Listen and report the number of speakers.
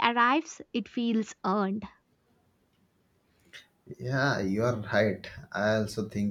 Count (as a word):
two